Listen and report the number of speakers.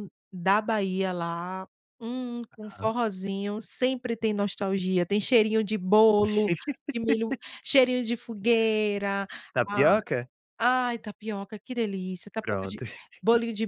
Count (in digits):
2